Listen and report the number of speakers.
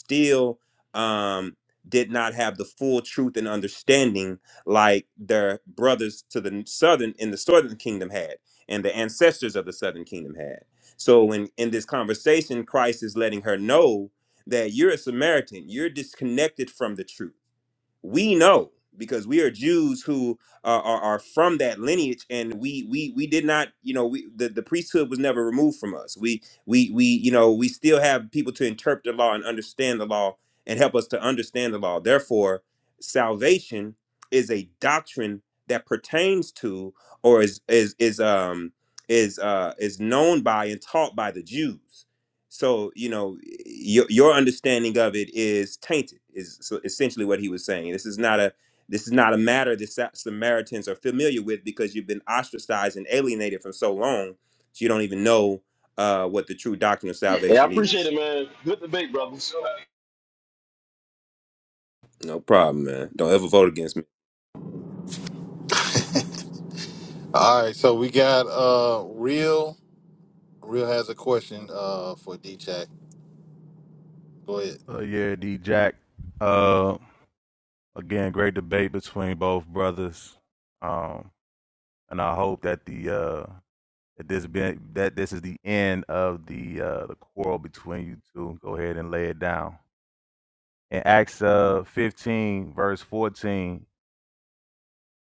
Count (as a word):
four